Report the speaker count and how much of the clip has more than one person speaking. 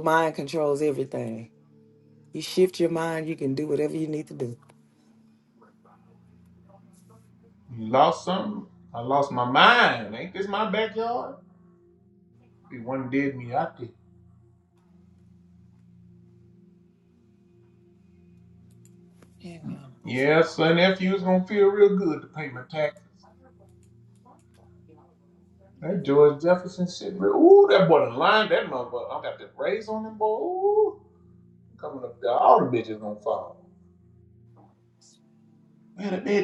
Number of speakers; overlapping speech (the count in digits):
2, no overlap